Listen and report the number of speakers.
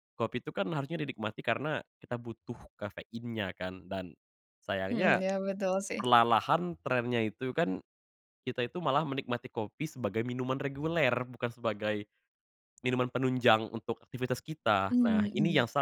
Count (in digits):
2